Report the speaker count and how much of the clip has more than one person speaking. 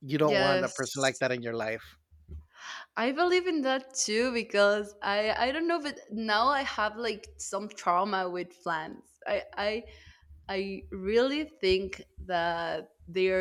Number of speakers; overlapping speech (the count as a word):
two, about 4%